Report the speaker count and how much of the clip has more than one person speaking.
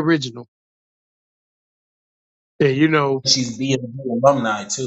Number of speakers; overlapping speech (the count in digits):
2, no overlap